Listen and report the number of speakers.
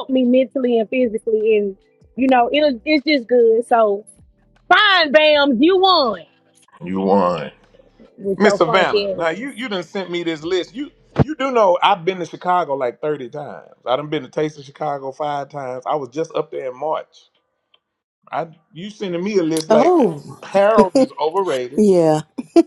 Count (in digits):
3